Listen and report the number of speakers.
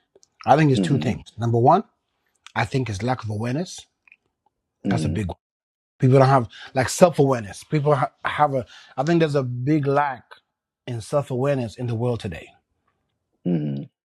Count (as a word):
two